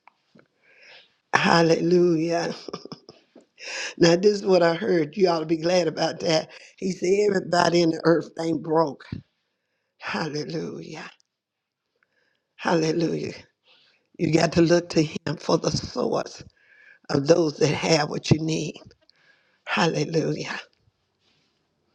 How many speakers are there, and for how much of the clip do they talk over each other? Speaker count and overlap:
one, no overlap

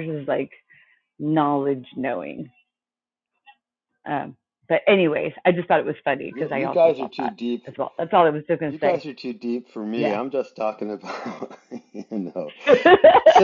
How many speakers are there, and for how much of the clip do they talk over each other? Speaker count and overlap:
two, about 11%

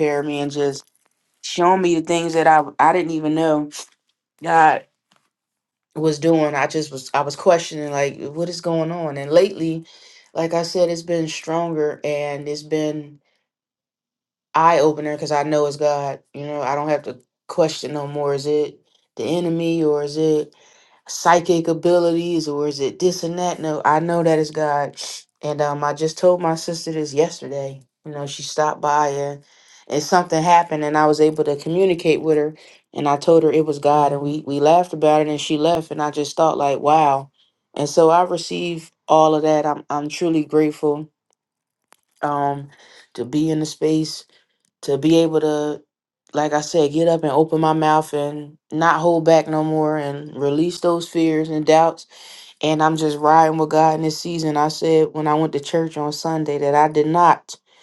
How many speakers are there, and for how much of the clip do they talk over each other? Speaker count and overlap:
one, no overlap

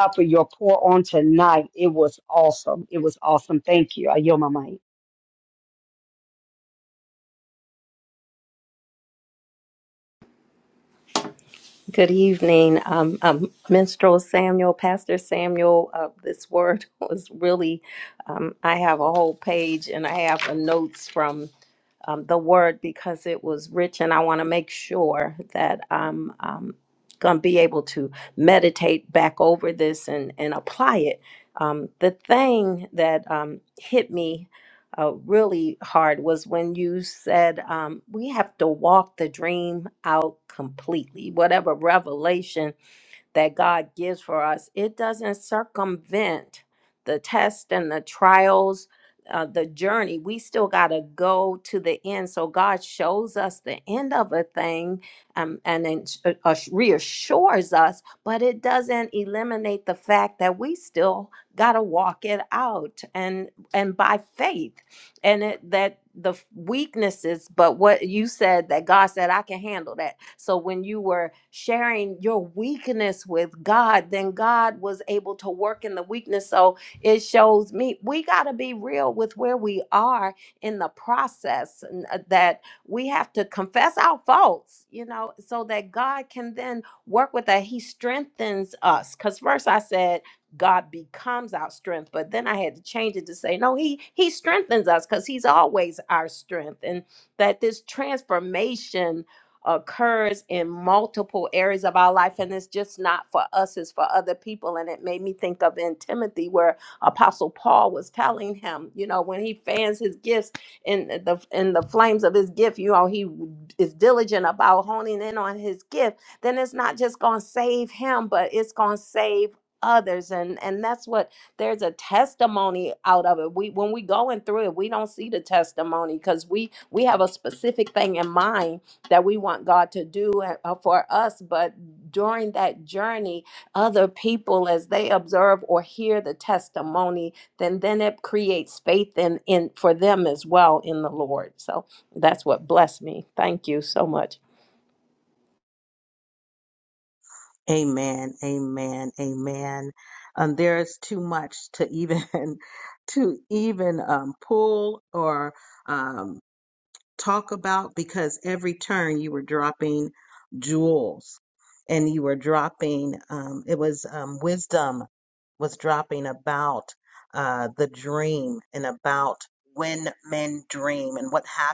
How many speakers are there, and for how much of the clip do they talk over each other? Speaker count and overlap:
three, no overlap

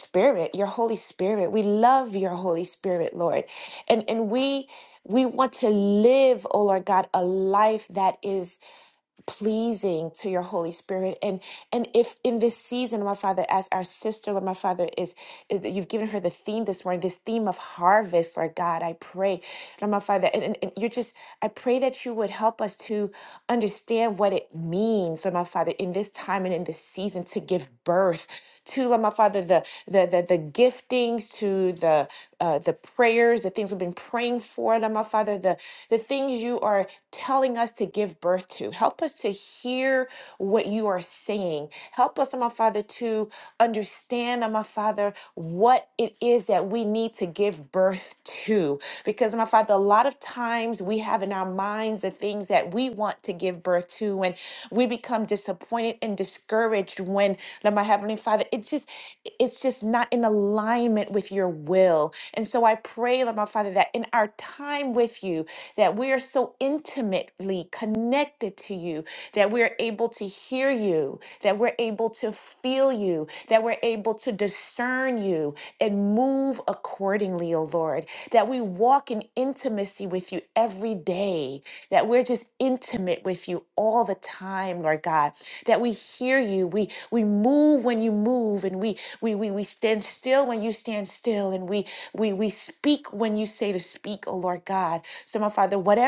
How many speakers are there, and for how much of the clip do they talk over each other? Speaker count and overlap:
one, no overlap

